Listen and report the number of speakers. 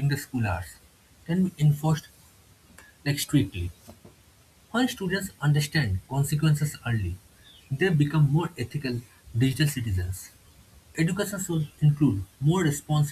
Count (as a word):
one